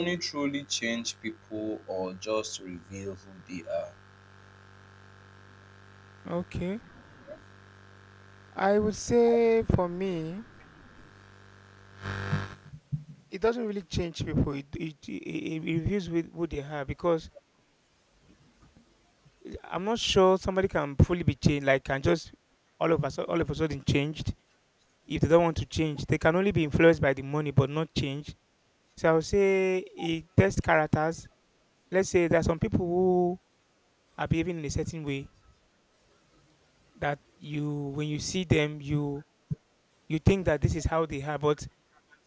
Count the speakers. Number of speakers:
2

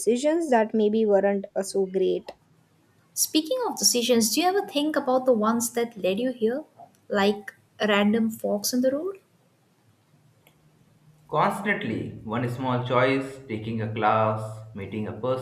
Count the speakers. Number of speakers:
3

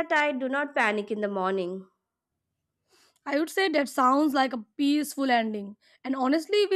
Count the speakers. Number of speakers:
2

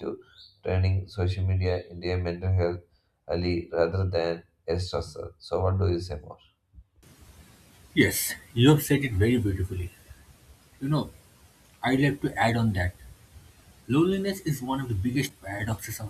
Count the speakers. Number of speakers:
2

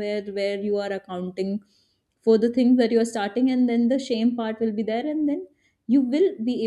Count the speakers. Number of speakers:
1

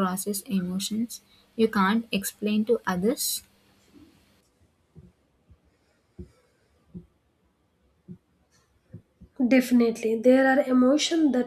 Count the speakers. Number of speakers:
2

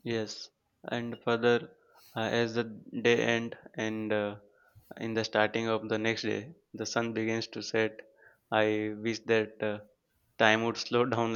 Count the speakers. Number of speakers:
1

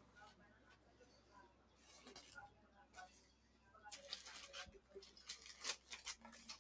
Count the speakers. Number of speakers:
0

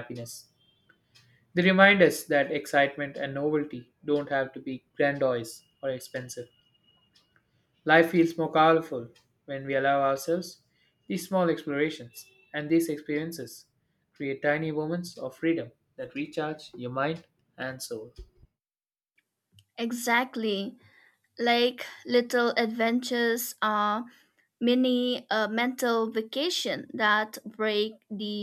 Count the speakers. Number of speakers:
2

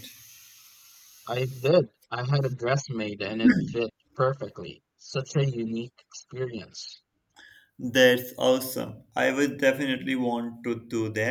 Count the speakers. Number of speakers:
2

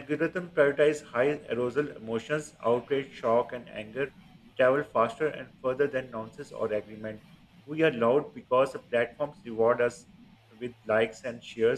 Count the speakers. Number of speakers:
1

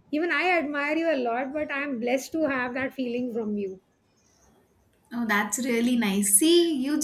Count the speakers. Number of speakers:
2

